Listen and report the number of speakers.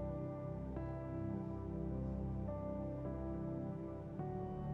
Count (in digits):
0